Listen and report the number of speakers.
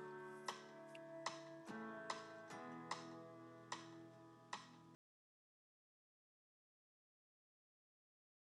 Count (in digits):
0